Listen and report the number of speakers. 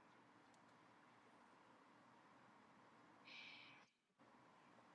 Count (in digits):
0